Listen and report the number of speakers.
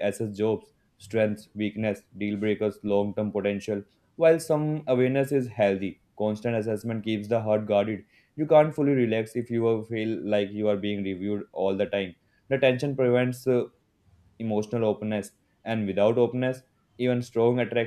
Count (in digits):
1